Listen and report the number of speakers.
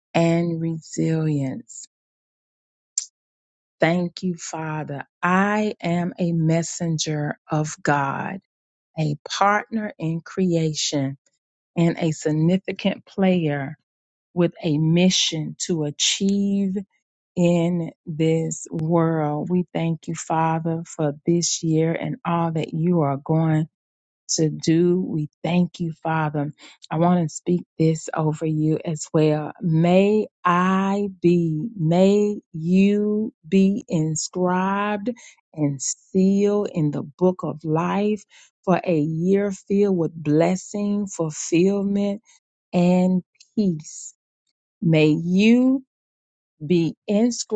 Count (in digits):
1